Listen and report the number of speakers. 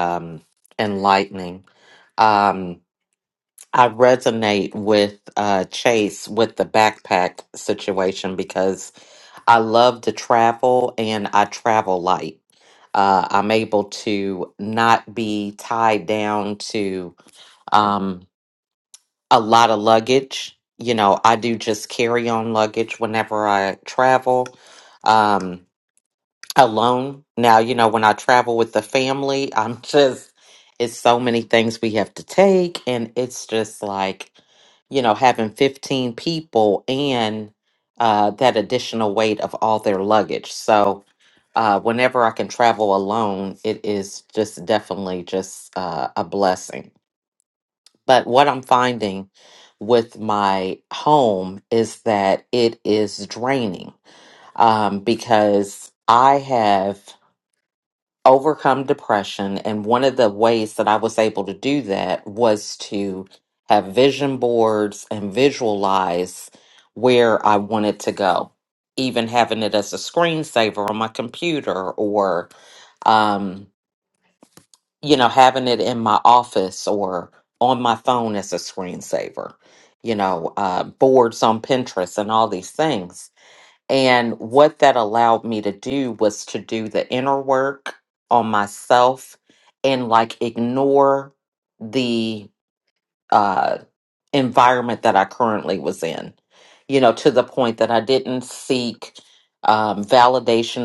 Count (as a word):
one